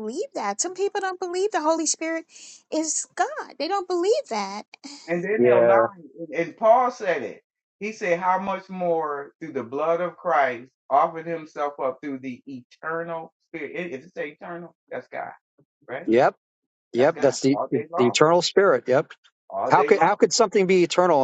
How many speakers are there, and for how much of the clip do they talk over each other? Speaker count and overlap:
3, about 8%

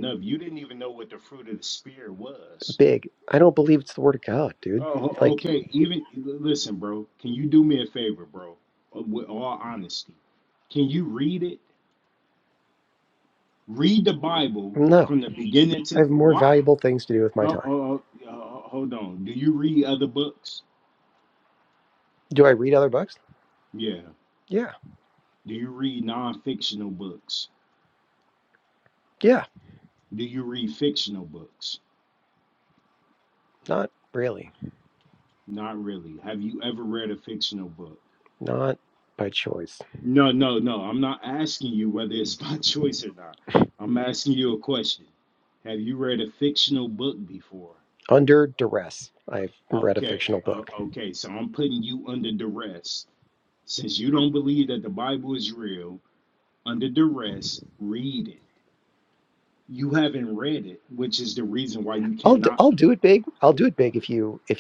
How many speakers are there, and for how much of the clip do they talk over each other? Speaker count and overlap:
2, about 5%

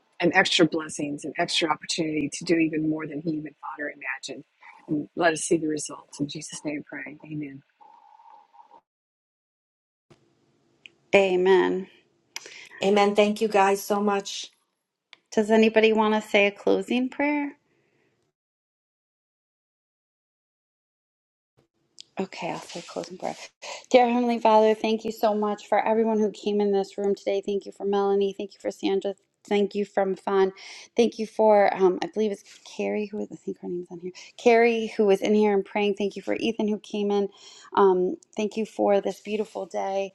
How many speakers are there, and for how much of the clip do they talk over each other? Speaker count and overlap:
3, no overlap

